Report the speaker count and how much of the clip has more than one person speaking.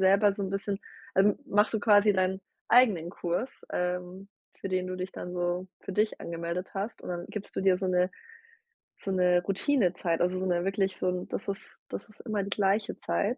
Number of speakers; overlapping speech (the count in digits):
1, no overlap